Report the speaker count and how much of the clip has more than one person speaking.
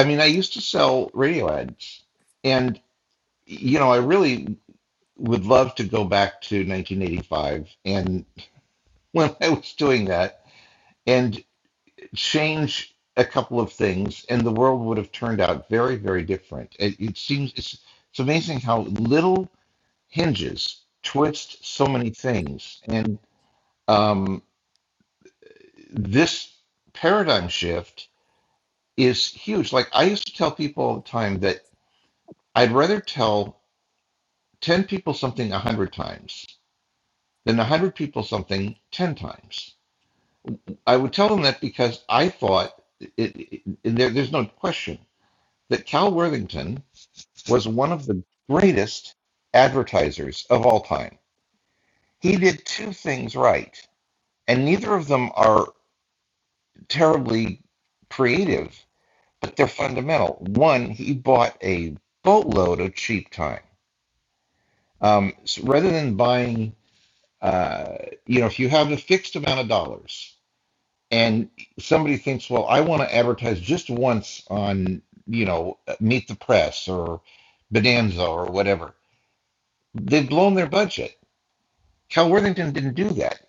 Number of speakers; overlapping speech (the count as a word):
one, no overlap